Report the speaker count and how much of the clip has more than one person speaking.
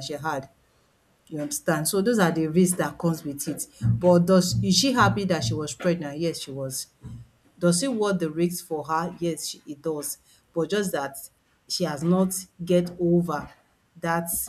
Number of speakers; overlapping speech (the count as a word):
one, no overlap